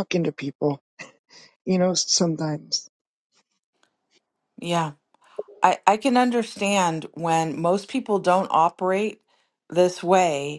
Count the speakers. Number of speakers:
2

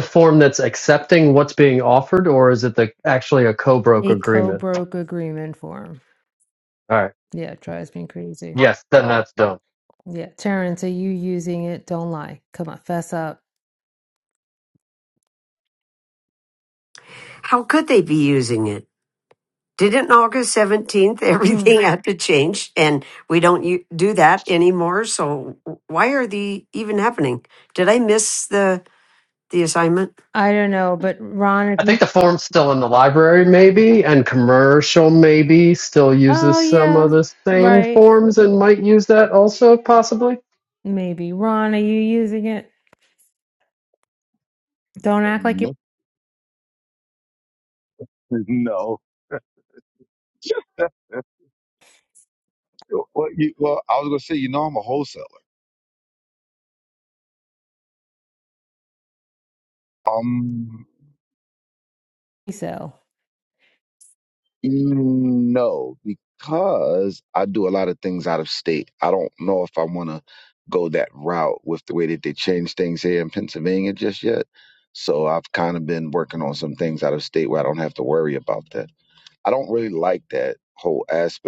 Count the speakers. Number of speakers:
4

